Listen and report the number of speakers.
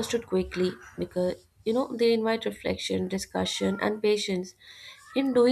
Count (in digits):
1